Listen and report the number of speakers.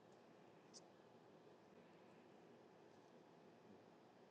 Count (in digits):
0